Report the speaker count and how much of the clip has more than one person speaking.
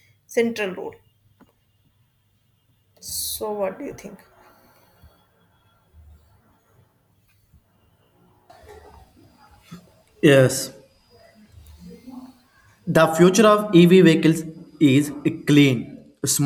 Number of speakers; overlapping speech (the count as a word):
two, no overlap